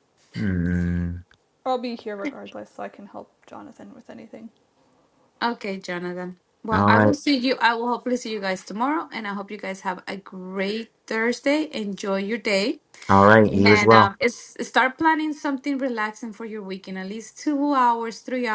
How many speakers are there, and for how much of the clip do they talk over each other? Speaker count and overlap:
3, about 5%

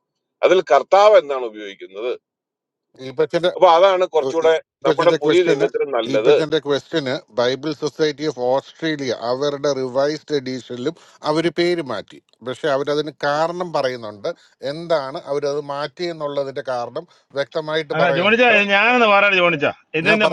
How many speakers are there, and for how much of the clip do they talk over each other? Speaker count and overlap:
3, about 11%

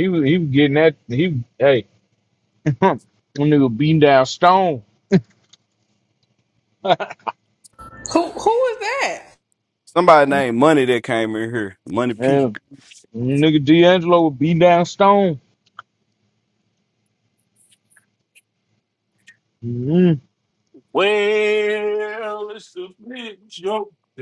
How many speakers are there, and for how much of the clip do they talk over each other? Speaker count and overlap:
4, about 1%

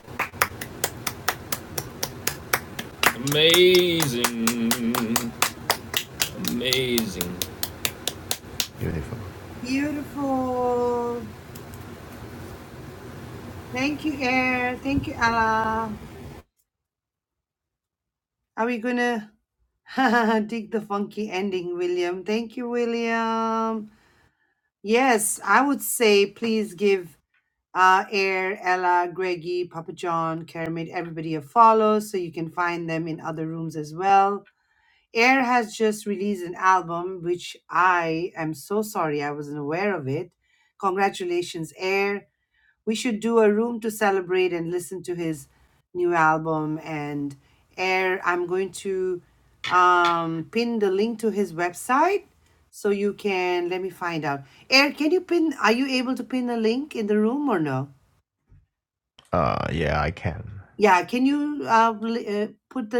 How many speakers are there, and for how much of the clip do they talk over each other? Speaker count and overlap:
3, no overlap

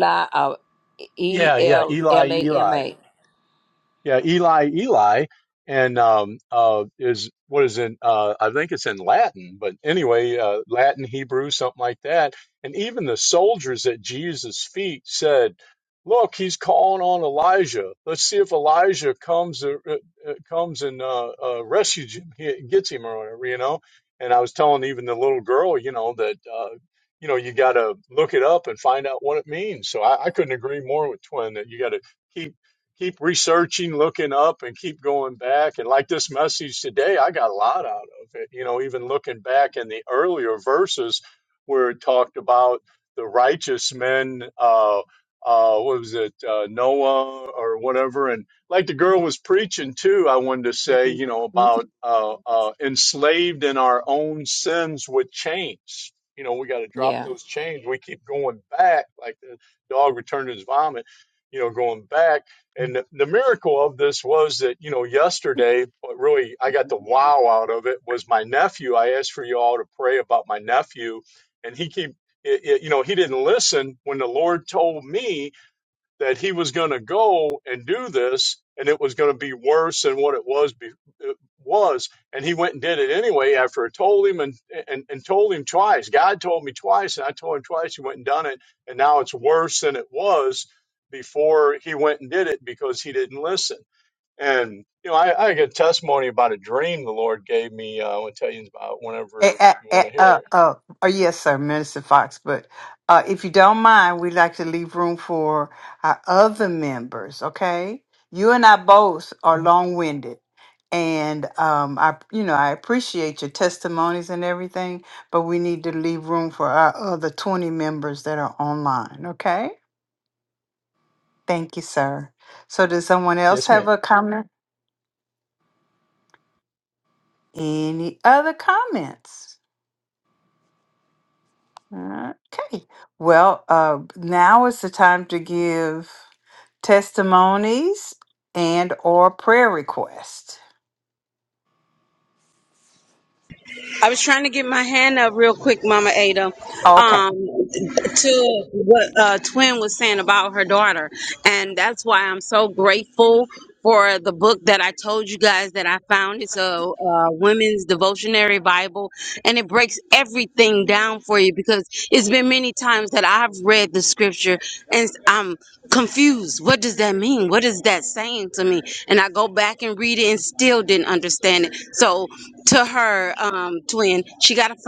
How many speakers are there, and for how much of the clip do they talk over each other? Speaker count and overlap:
4, about 2%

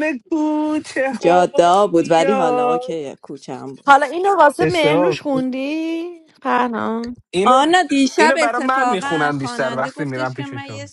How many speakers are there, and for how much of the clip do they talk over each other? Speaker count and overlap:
3, about 45%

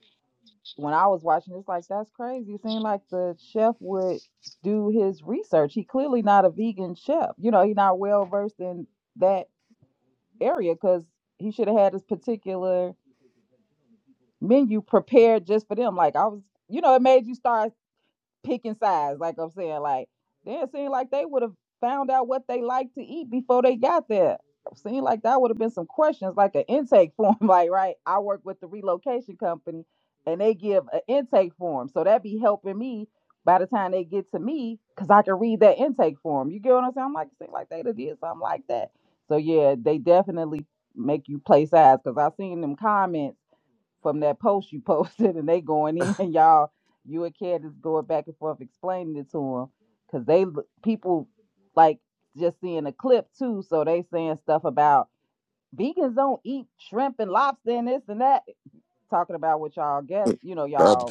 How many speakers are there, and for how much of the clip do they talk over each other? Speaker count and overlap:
1, no overlap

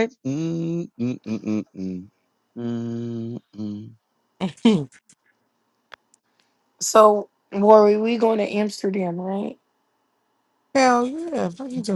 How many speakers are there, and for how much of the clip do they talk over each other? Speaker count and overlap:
3, no overlap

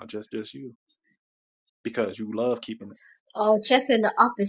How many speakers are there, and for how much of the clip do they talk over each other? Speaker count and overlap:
2, no overlap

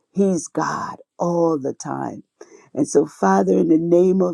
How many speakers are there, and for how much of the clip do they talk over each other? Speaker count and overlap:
1, no overlap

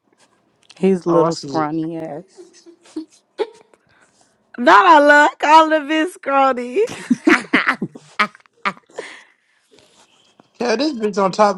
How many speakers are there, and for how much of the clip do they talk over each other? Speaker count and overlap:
3, about 5%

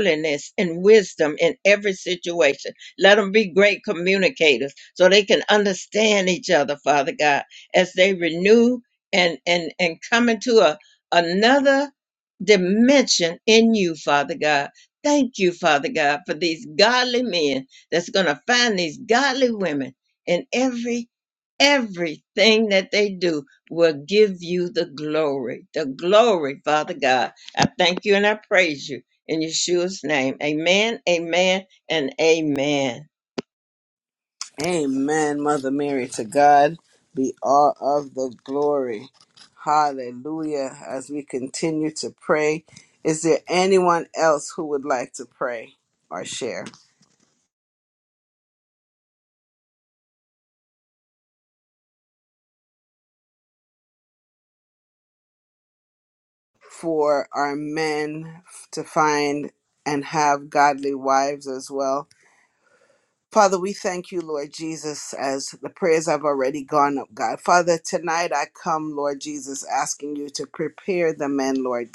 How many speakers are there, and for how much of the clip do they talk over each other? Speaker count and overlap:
2, no overlap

